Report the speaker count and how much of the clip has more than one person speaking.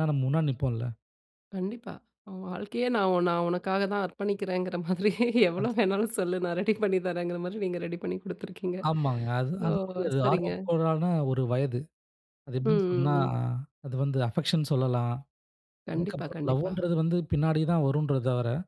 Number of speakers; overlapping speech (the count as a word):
two, about 10%